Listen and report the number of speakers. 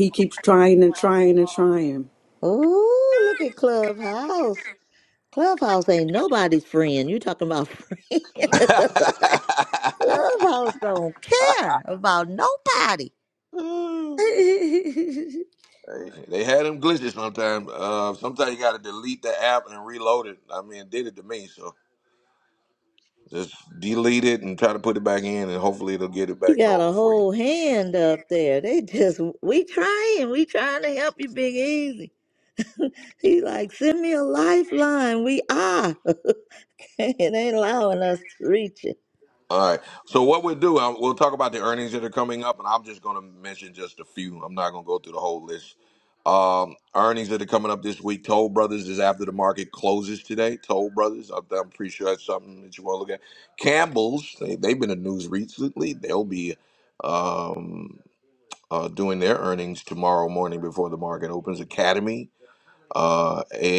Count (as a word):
three